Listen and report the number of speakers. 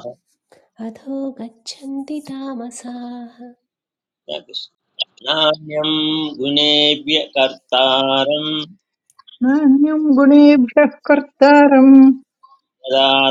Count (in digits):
3